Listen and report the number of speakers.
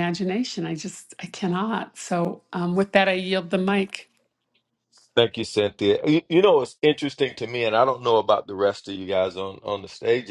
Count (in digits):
2